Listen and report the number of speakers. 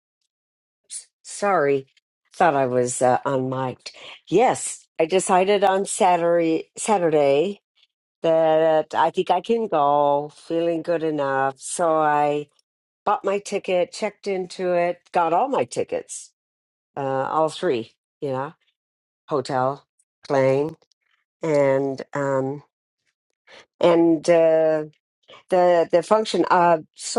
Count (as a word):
one